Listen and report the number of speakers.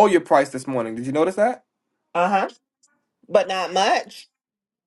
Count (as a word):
two